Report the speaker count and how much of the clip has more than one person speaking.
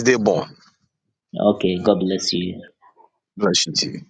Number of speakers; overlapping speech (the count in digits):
2, no overlap